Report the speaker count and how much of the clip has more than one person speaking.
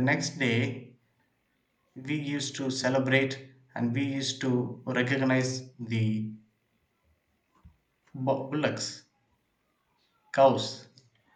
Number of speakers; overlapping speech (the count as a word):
one, no overlap